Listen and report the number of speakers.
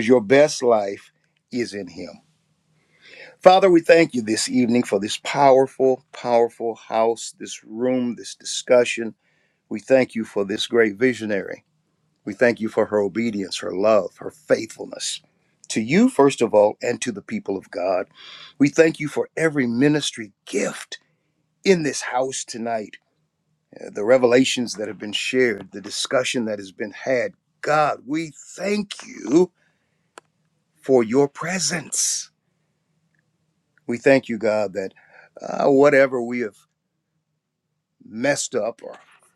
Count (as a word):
one